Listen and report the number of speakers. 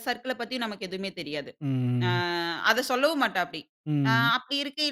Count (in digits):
2